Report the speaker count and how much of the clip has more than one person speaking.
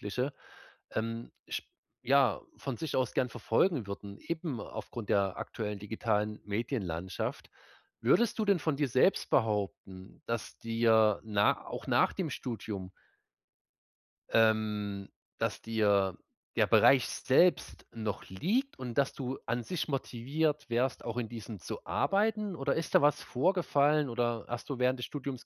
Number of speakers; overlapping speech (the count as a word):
one, no overlap